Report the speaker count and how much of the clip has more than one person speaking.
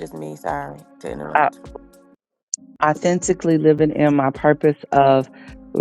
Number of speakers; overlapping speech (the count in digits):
2, about 2%